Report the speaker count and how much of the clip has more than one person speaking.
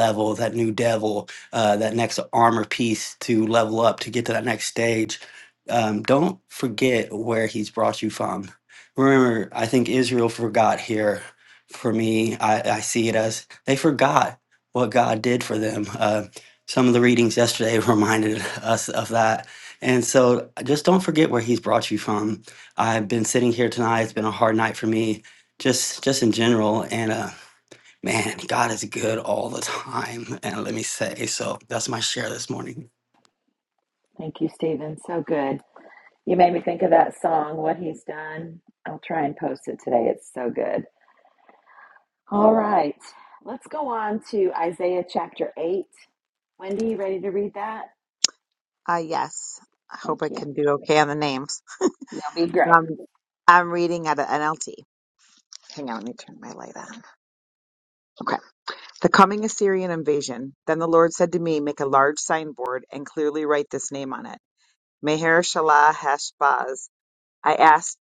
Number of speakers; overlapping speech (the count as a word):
three, about 1%